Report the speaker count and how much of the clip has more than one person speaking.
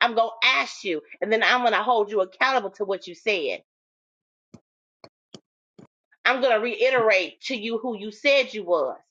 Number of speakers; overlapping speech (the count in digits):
1, no overlap